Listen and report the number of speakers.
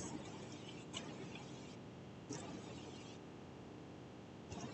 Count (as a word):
zero